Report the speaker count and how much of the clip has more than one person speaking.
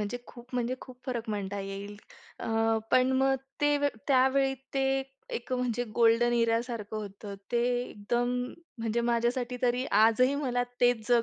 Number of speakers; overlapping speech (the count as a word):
one, no overlap